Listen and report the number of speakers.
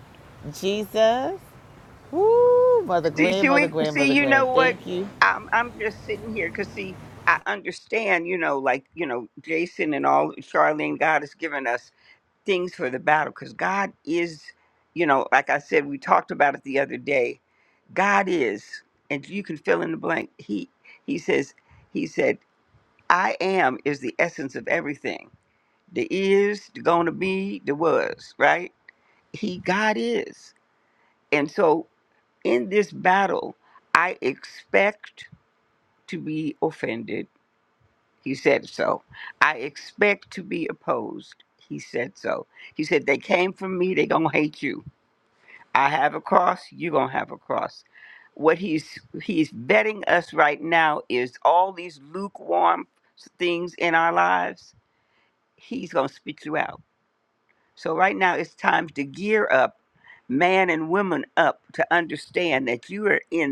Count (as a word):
two